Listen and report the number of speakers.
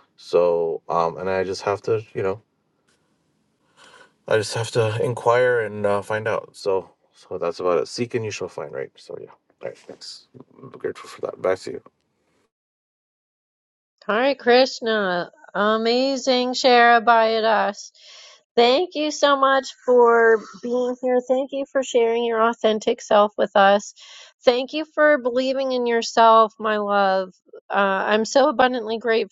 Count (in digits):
2